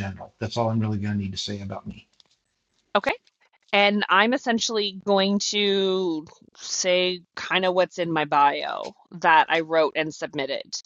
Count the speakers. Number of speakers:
two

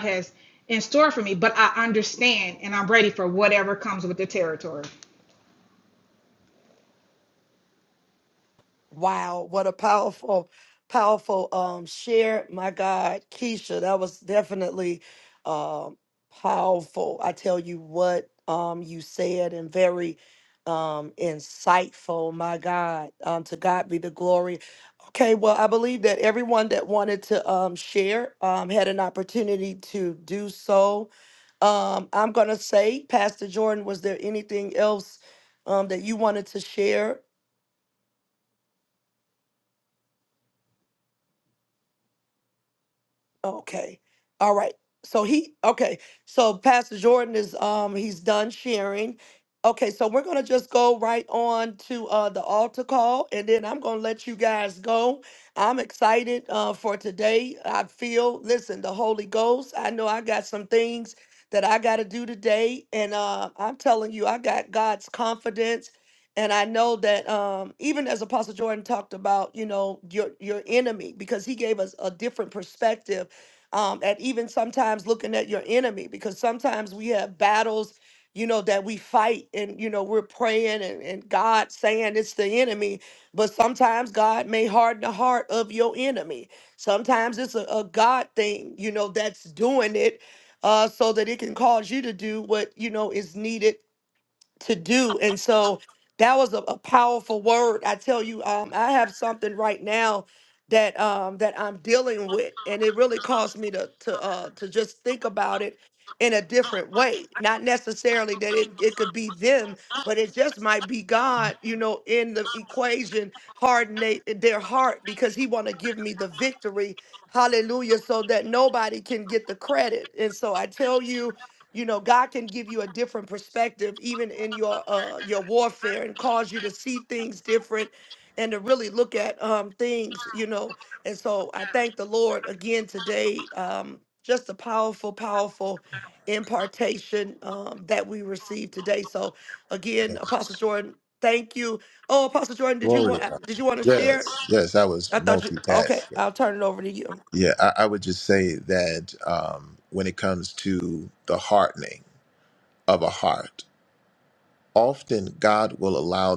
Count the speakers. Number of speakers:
three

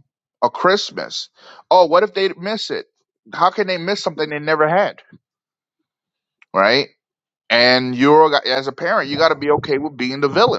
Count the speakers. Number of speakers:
one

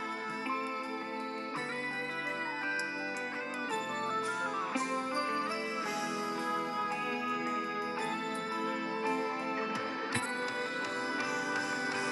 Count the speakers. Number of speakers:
zero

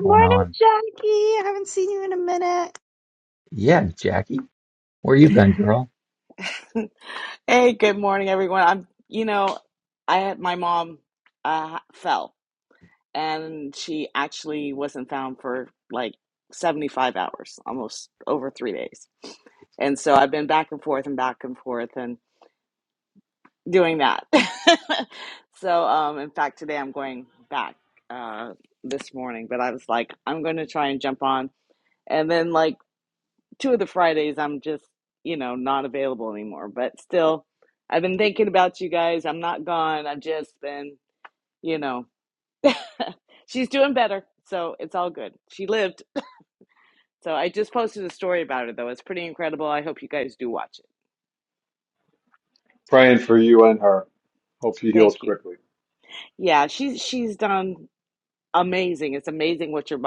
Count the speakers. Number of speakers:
four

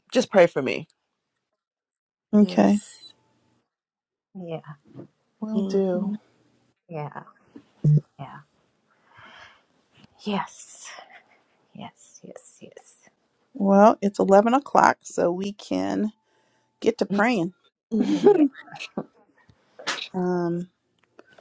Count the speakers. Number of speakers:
three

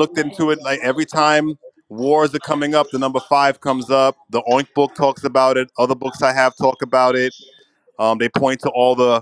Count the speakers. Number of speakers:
one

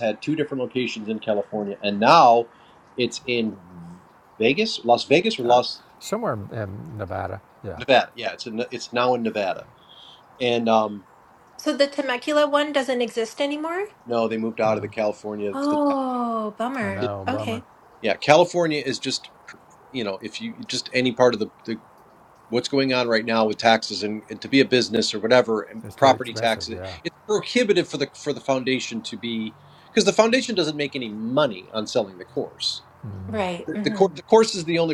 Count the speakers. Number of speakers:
three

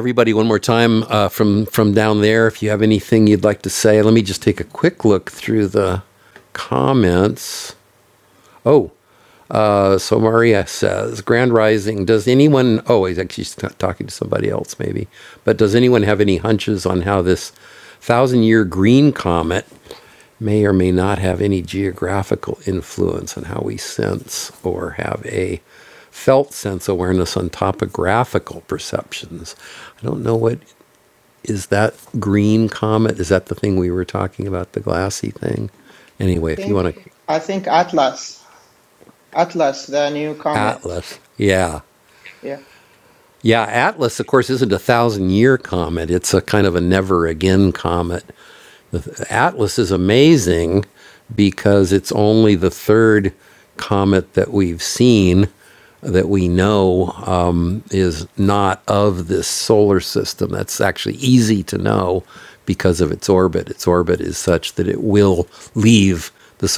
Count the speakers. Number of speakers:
two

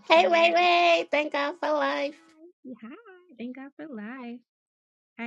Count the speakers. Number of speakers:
two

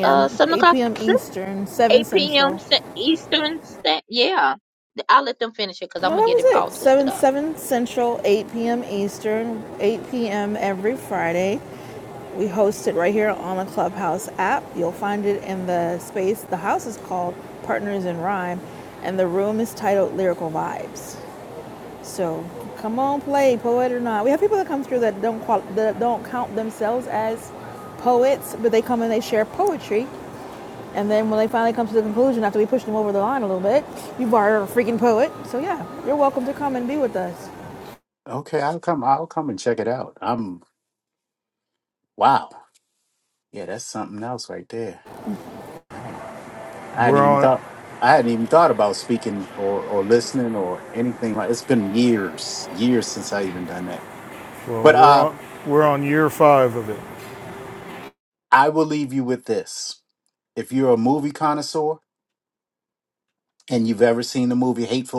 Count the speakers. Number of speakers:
four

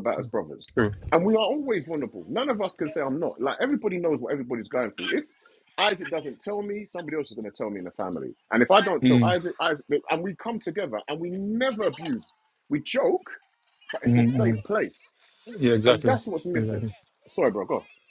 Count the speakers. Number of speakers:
two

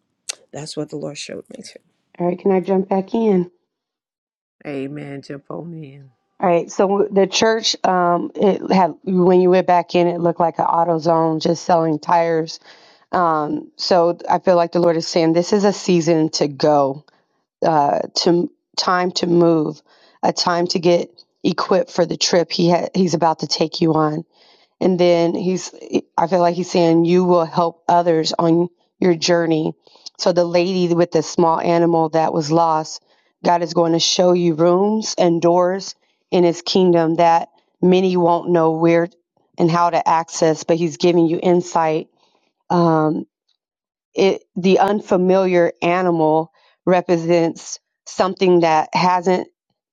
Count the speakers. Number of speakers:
three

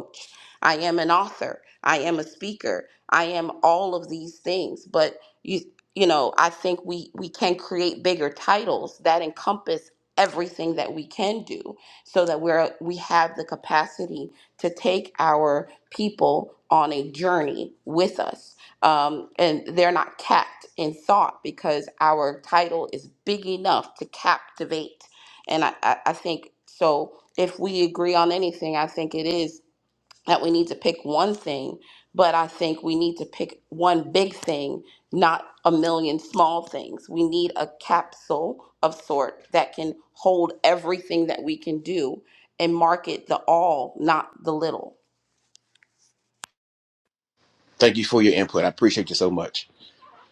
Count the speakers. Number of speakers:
two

